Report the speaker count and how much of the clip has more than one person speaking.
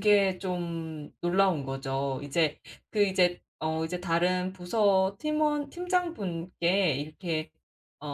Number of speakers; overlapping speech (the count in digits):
1, no overlap